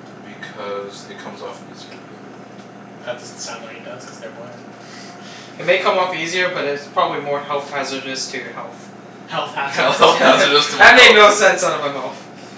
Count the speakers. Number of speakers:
three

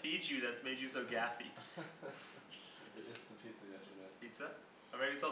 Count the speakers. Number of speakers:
two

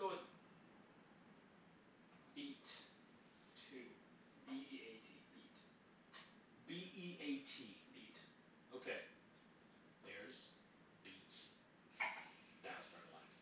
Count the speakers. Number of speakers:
two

